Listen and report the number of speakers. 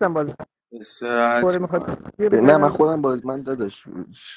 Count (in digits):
3